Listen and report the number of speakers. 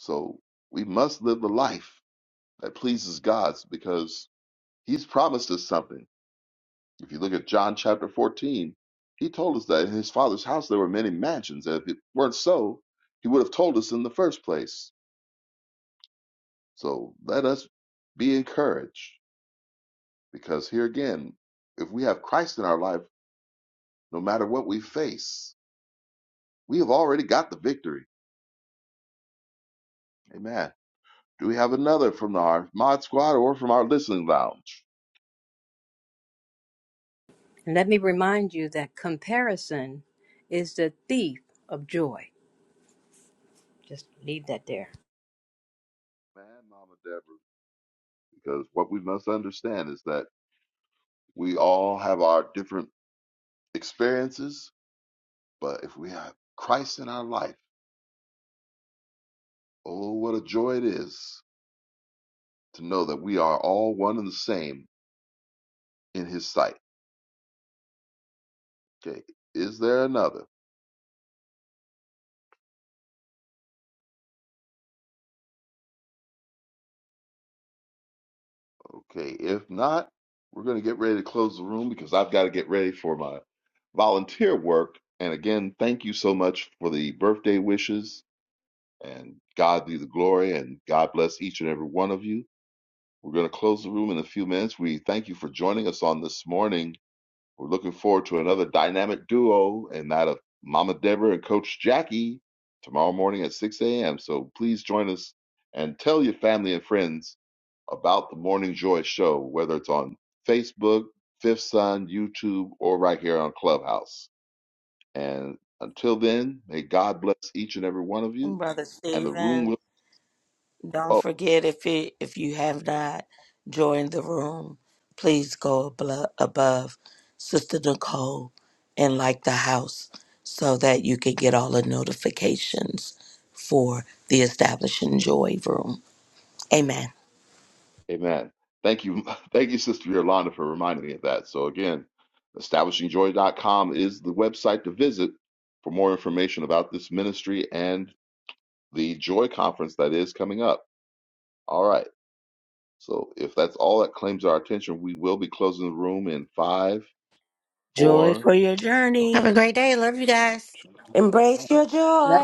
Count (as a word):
five